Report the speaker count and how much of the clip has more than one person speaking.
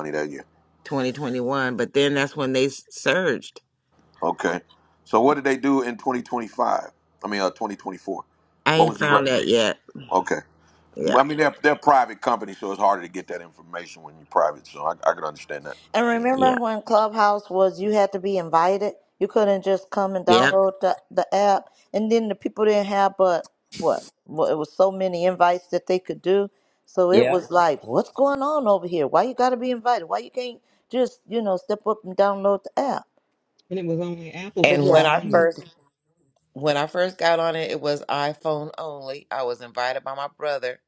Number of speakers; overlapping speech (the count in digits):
4, about 6%